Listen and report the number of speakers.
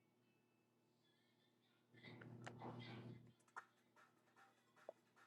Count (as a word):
zero